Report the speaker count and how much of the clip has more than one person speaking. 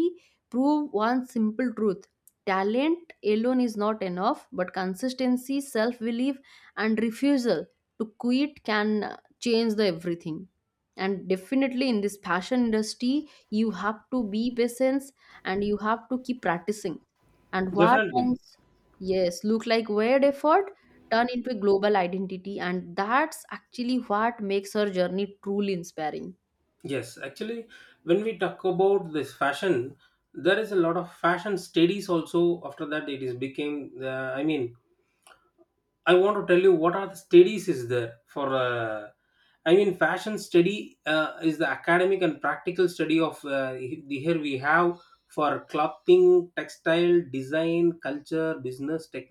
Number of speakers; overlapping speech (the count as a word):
two, about 1%